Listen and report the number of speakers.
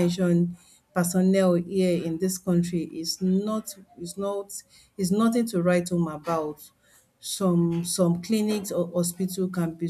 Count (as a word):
one